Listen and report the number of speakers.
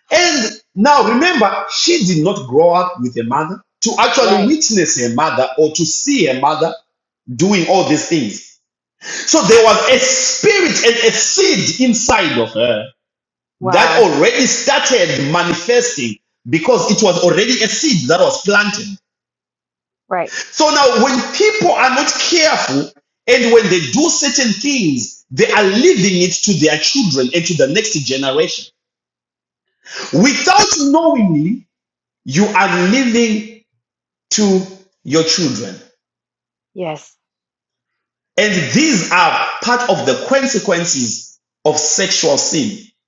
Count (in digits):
2